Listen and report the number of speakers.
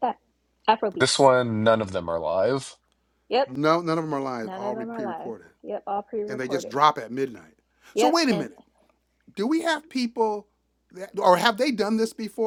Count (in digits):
3